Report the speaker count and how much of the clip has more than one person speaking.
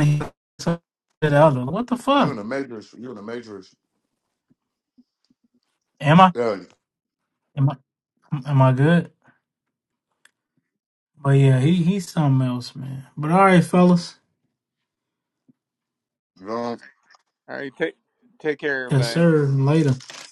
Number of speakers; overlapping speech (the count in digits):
3, about 3%